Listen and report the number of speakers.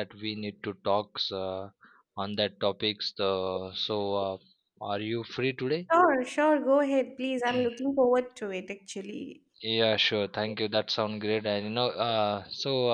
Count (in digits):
2